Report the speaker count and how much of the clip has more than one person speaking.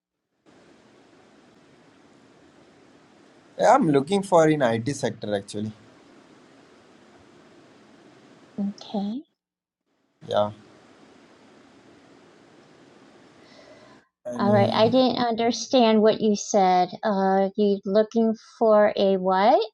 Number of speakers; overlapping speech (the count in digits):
2, about 3%